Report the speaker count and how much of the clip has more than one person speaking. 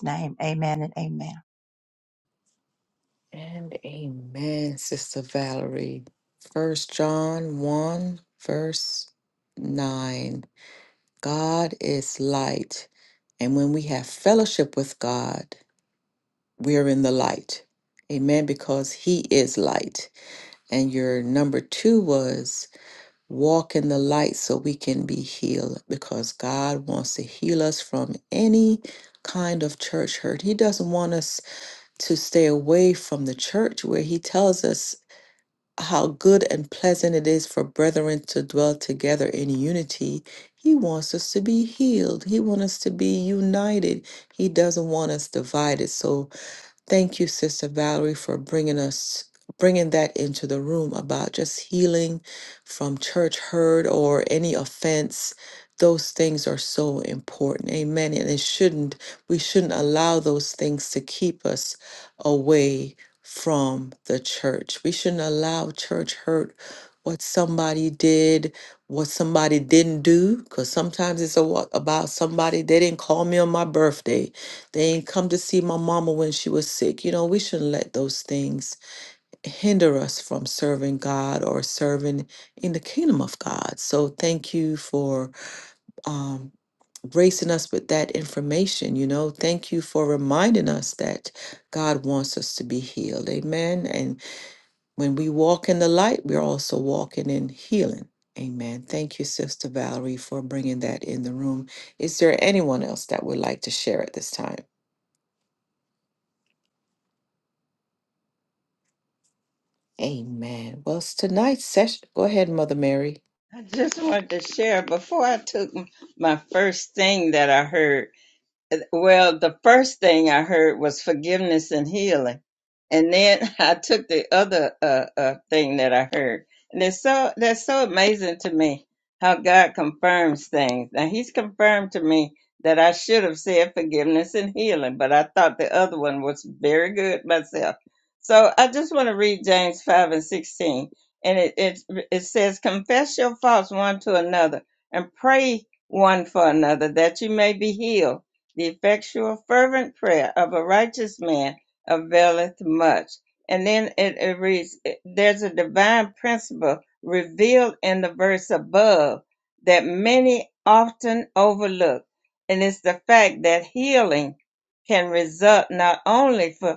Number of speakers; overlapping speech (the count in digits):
3, no overlap